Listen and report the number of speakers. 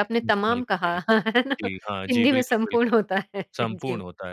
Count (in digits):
2